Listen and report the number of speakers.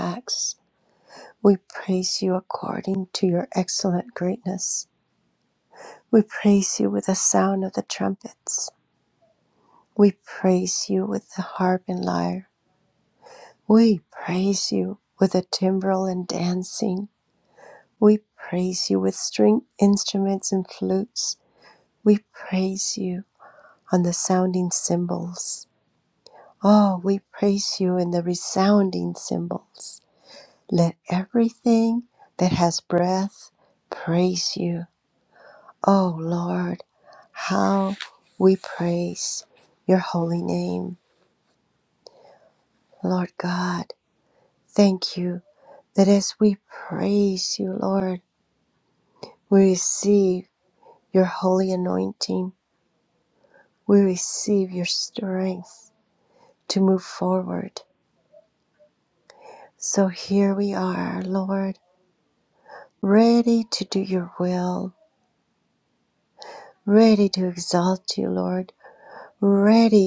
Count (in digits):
1